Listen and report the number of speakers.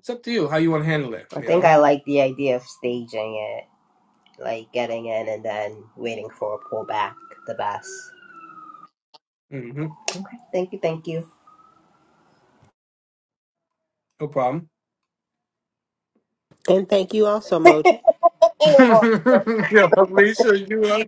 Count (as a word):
three